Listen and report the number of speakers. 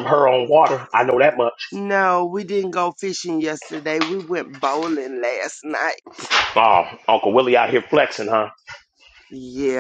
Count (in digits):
2